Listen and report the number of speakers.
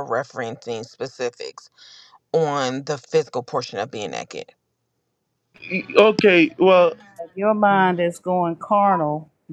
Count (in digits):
3